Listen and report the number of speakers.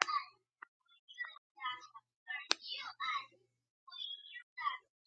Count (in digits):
0